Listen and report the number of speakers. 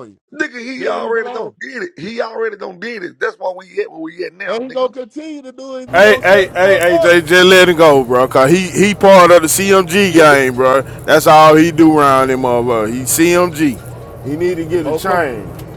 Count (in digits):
3